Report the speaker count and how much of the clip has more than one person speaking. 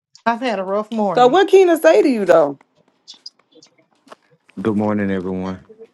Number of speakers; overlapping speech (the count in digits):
3, about 3%